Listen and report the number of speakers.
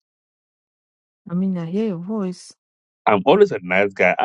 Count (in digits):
2